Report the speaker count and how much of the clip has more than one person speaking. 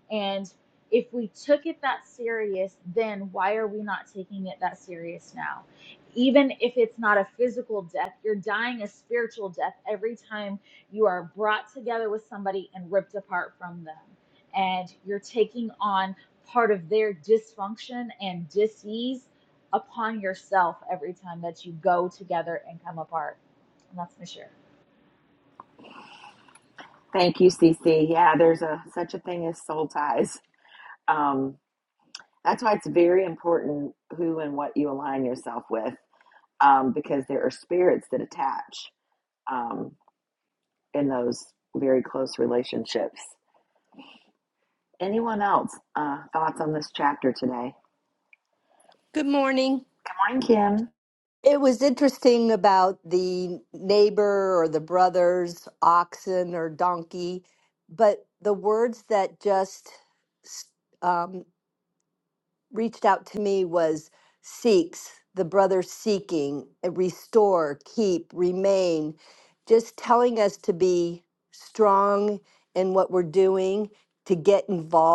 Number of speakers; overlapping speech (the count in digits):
3, no overlap